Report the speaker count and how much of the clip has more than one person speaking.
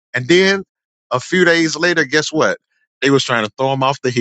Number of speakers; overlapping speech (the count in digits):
1, no overlap